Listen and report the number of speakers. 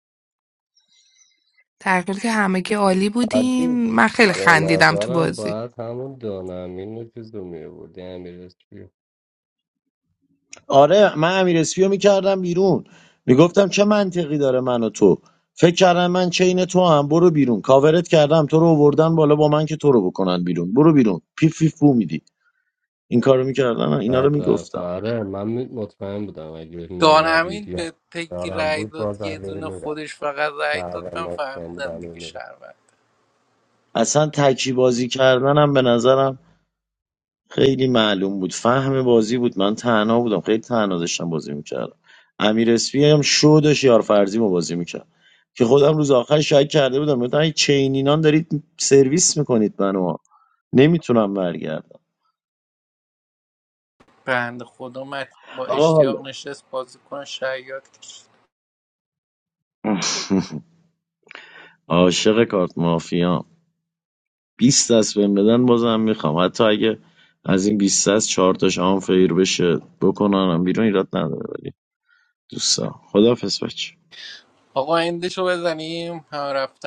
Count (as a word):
four